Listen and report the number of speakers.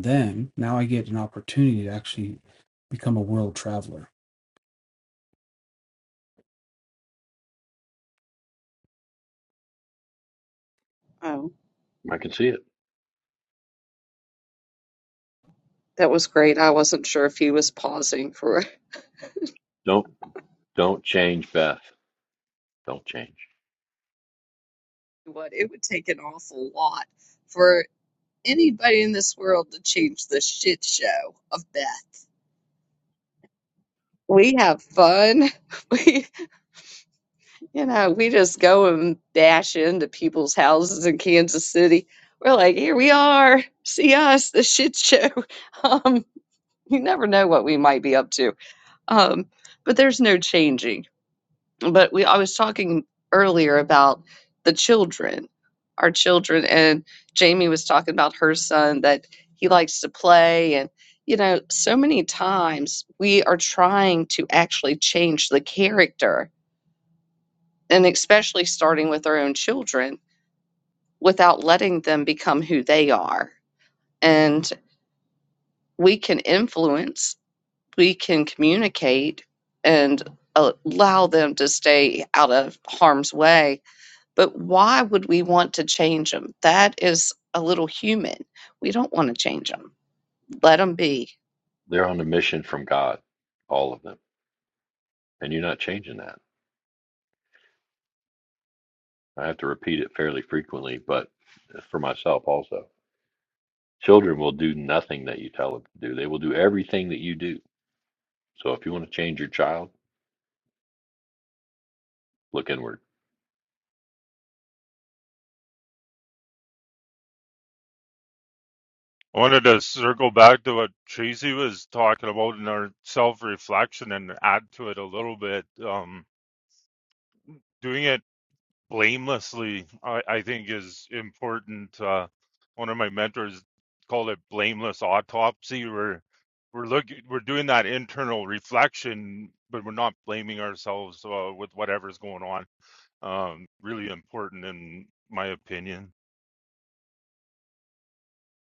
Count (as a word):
four